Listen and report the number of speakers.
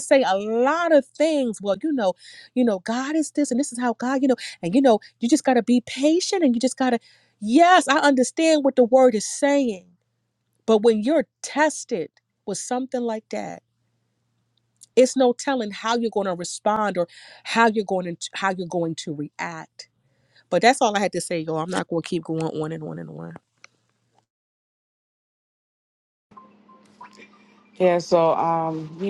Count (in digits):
2